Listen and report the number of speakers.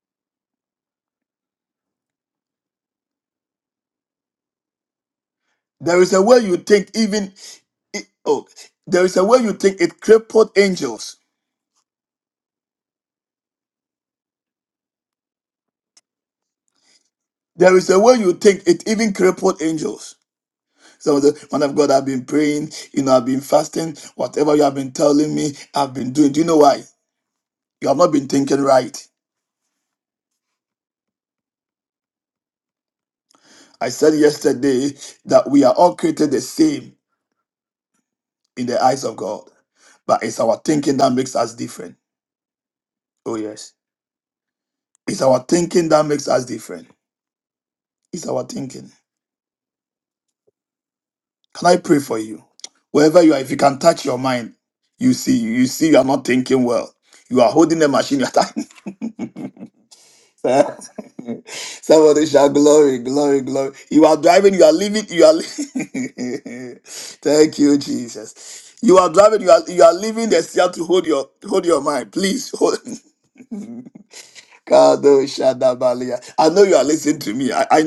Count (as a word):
one